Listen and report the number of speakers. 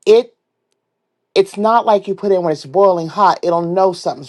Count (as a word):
one